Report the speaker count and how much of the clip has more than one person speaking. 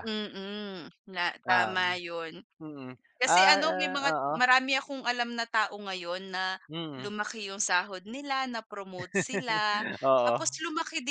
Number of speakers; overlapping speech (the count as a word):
two, about 19%